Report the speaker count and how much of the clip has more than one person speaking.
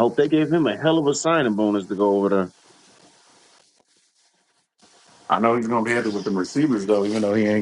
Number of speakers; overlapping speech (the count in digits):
2, no overlap